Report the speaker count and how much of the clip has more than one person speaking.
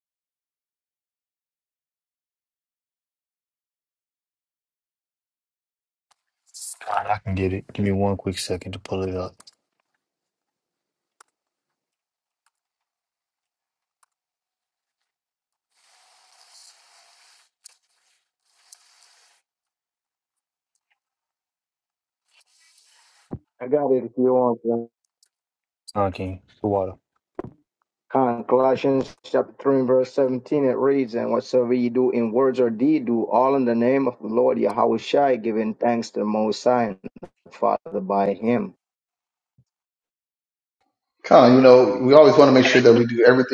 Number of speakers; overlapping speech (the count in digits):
3, no overlap